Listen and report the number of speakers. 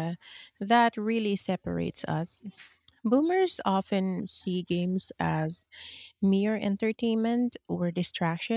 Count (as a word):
one